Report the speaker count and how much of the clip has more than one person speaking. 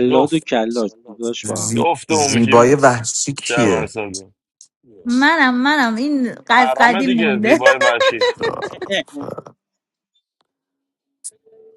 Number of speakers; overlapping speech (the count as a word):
four, about 25%